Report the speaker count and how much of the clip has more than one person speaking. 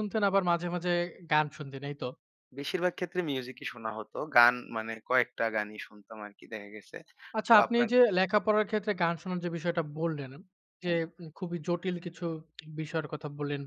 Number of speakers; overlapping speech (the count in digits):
2, about 4%